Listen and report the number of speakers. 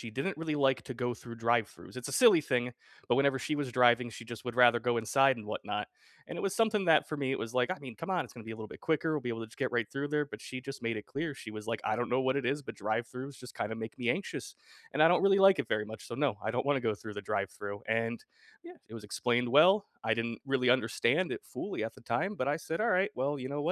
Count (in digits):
1